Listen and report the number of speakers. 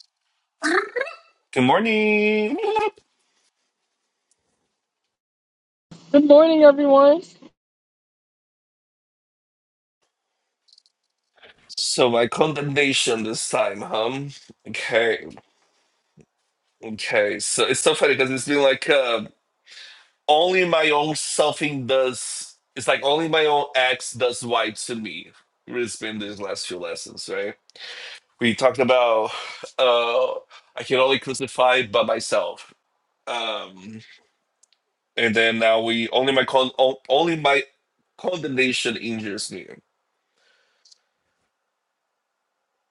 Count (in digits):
2